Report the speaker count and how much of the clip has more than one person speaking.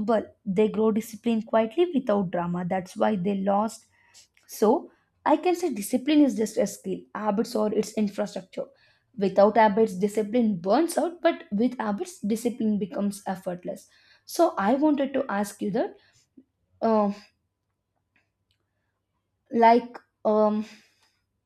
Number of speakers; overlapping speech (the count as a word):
one, no overlap